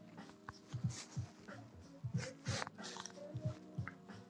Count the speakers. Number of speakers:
0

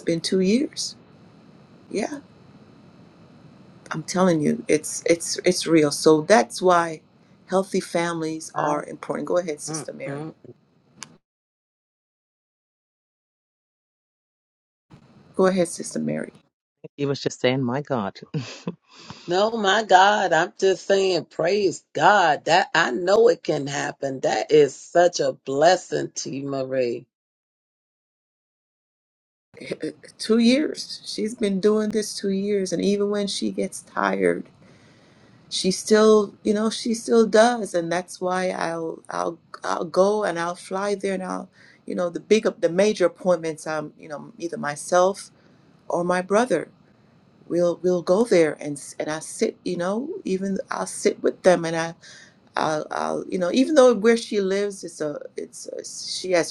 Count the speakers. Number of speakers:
3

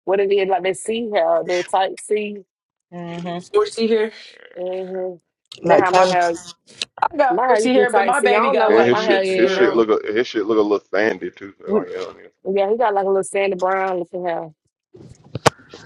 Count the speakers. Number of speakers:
4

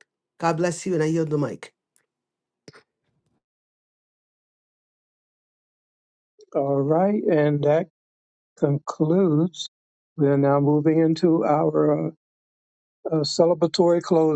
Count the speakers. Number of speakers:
2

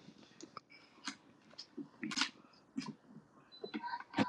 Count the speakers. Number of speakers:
0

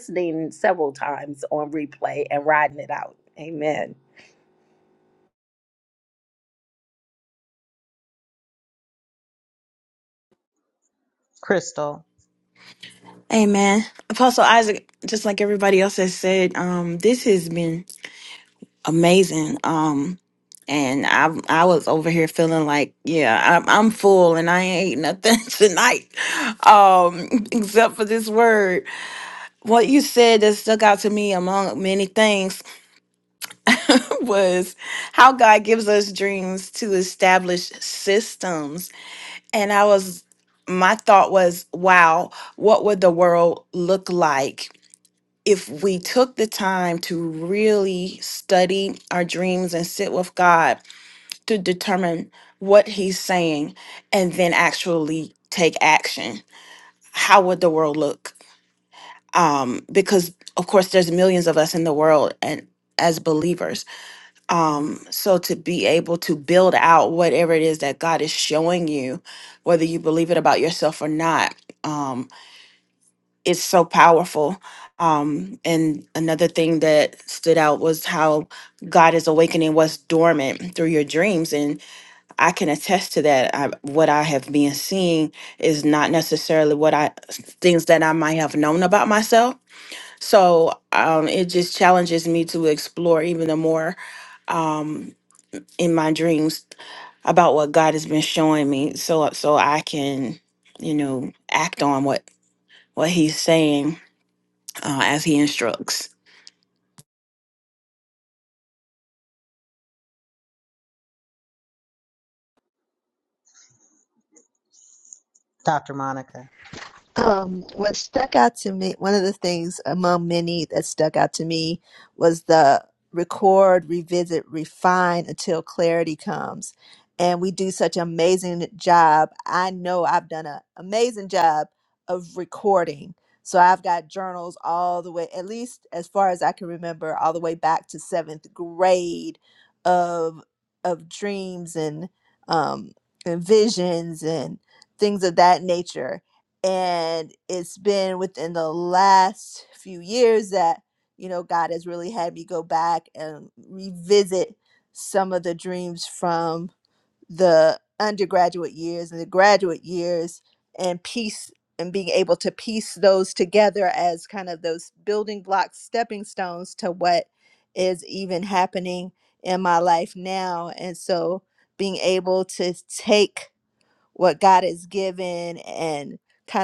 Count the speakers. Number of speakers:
4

